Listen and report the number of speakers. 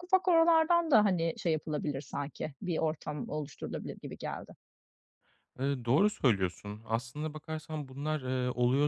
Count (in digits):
2